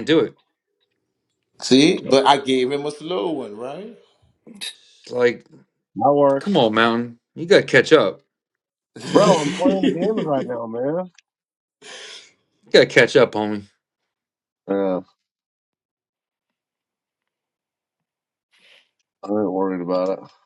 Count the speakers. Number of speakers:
3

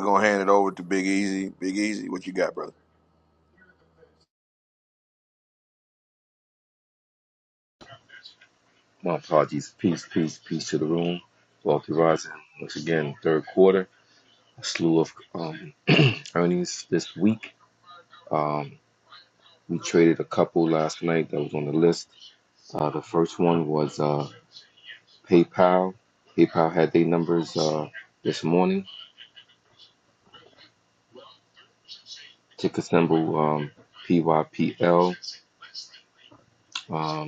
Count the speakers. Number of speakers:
2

